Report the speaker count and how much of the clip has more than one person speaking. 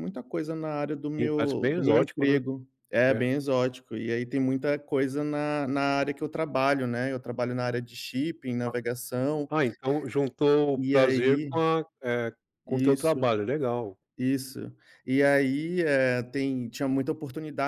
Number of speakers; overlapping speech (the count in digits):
2, about 16%